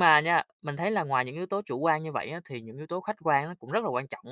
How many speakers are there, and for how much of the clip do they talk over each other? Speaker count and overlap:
1, no overlap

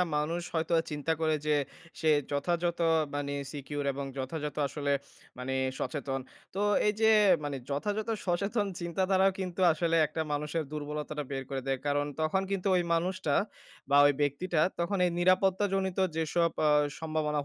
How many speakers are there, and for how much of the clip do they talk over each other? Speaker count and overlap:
1, no overlap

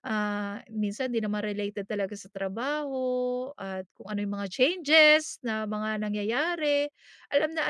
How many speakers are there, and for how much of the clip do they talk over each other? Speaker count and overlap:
1, no overlap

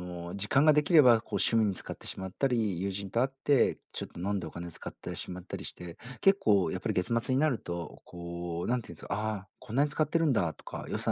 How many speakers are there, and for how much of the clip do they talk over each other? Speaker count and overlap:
1, no overlap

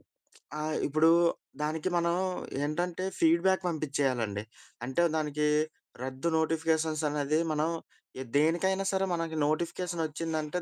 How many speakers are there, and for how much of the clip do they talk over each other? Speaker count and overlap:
1, no overlap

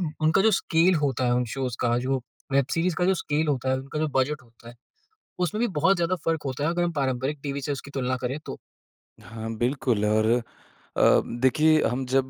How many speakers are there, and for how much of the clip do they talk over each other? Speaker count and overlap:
2, no overlap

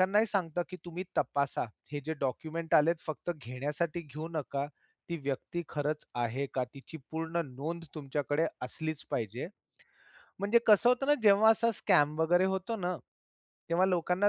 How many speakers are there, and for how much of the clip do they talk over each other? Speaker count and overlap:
1, no overlap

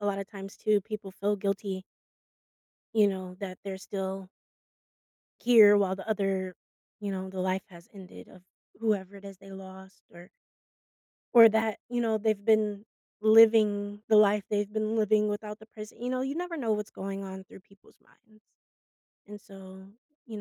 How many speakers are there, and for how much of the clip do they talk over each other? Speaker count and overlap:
1, no overlap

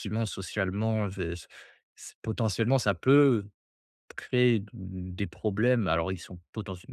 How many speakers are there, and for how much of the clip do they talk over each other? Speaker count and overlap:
1, no overlap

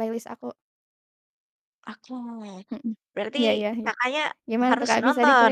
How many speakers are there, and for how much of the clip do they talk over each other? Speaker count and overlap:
2, about 18%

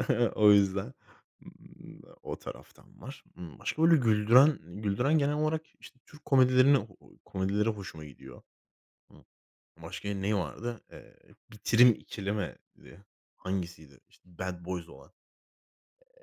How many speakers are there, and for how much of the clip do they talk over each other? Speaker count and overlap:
1, no overlap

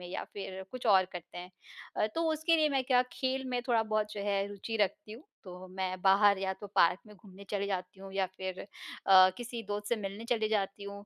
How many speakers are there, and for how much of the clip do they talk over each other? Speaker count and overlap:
1, no overlap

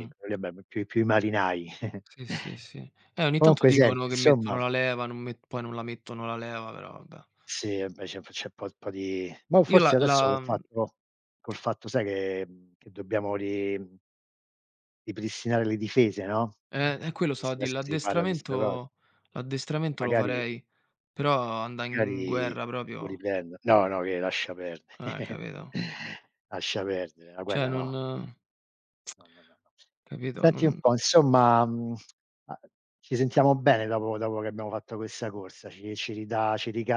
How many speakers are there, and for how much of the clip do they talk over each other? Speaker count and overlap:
2, about 17%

